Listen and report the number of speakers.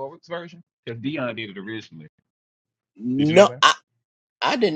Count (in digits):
2